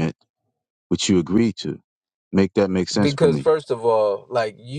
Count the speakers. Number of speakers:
two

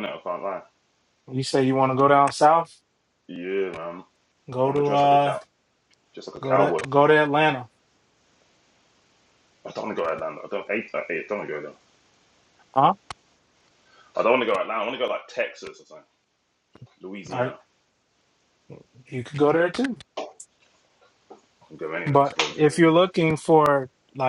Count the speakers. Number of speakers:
two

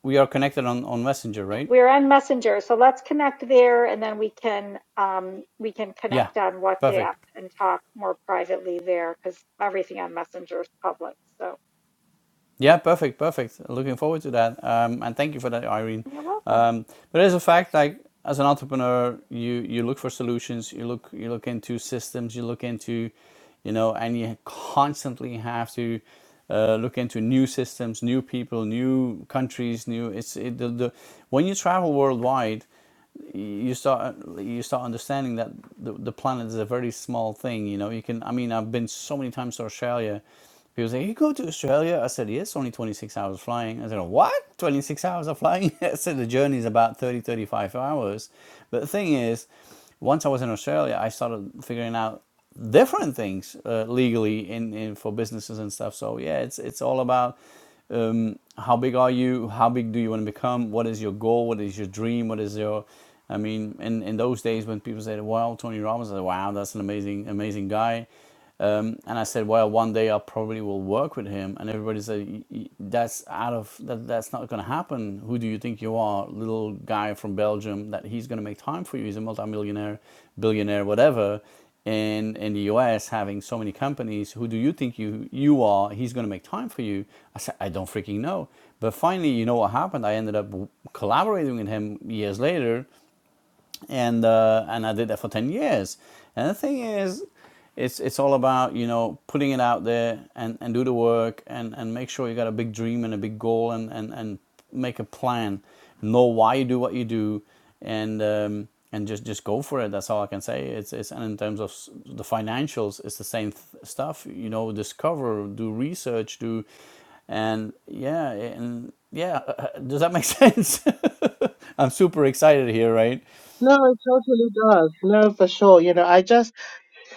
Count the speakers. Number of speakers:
three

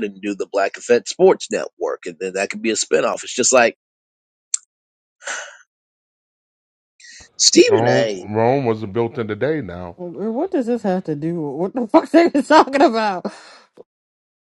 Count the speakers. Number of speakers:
three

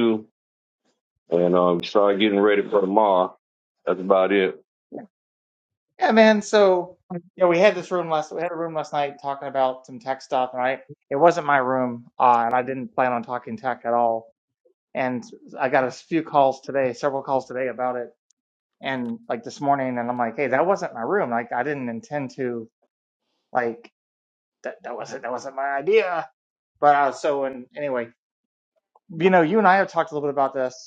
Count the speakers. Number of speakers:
two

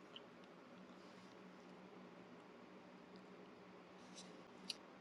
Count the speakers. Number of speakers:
zero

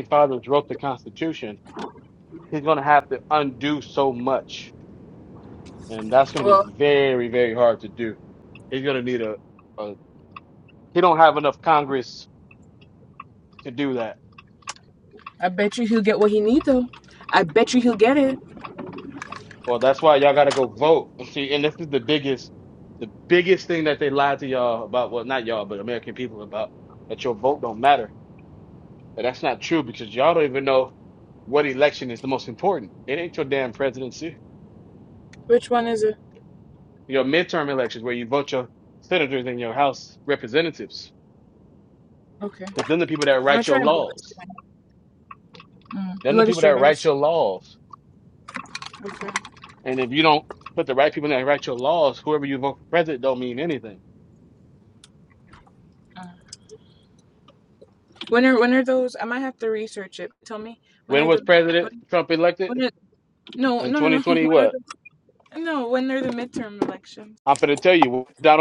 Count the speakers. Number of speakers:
two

